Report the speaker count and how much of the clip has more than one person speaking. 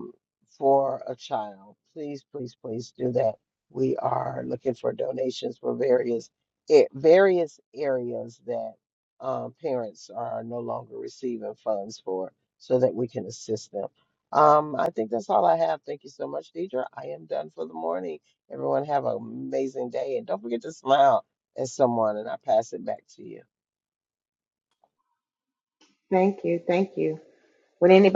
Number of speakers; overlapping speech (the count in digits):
2, no overlap